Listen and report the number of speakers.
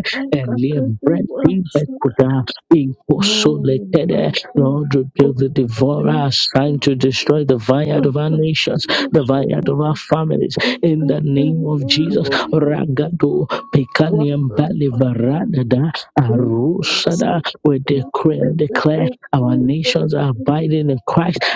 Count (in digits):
2